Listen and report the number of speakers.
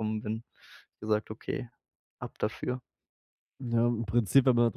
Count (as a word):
two